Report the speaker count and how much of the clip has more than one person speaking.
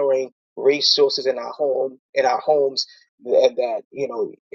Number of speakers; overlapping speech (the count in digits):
1, no overlap